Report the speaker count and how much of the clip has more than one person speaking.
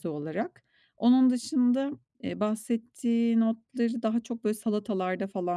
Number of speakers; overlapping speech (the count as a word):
one, no overlap